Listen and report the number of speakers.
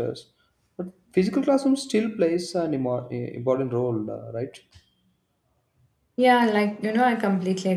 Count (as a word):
two